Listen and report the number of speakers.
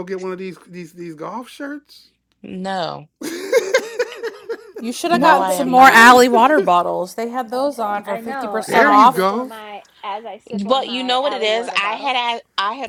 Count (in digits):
4